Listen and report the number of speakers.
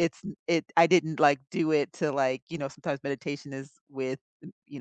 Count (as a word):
one